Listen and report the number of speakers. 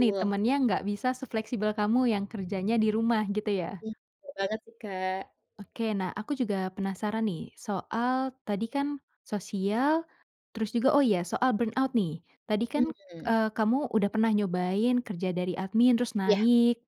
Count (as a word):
two